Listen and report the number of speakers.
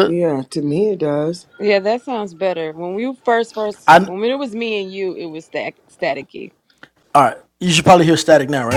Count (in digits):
3